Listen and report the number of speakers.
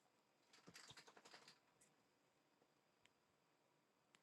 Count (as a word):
zero